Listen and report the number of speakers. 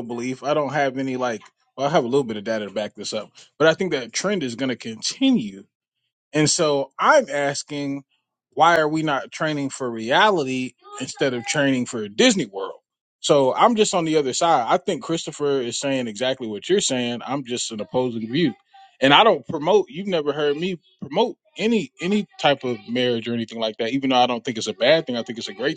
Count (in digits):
1